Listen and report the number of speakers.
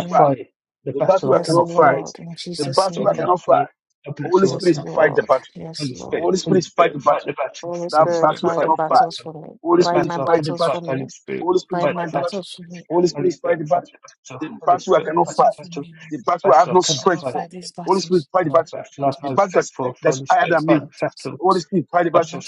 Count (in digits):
3